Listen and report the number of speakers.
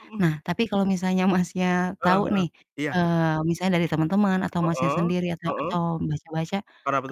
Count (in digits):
2